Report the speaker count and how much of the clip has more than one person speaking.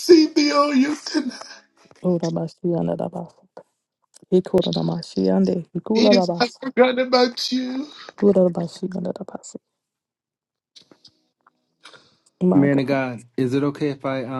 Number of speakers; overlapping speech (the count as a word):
three, about 6%